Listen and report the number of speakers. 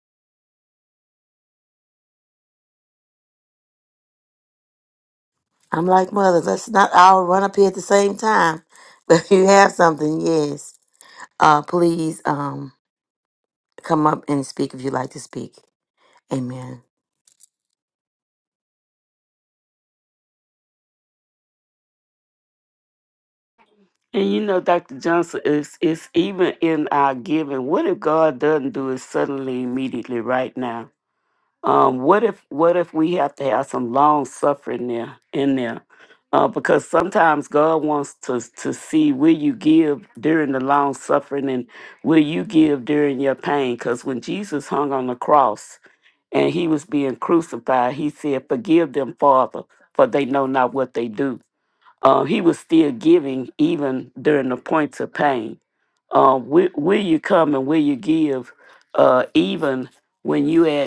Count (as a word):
two